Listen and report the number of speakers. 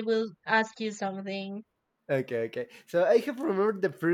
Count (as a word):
two